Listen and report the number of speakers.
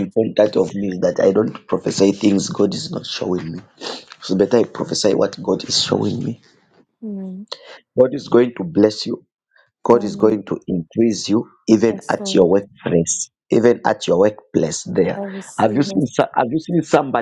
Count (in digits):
2